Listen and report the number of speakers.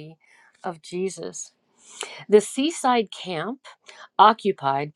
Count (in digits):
1